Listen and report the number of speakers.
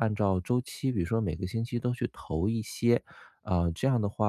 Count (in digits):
1